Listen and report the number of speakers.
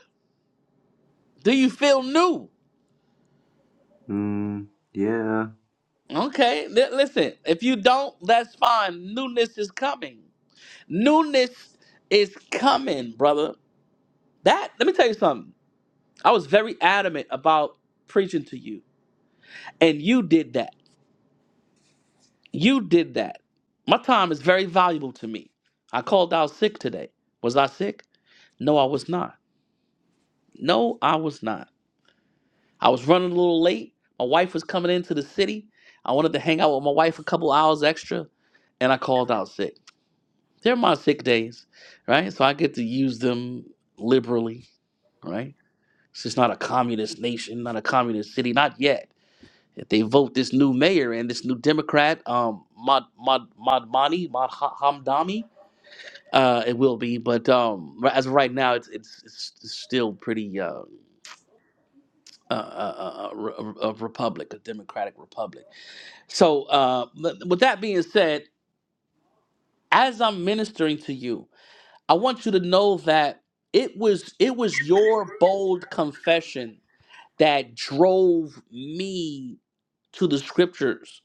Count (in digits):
2